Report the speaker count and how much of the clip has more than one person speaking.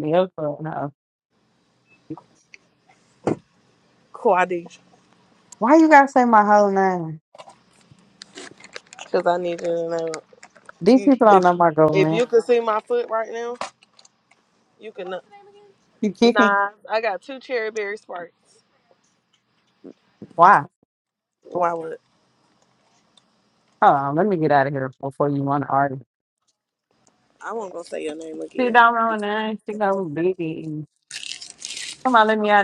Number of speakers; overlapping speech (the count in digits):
2, about 4%